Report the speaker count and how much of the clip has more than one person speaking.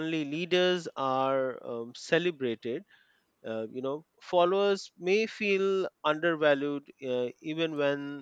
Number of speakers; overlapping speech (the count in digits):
1, no overlap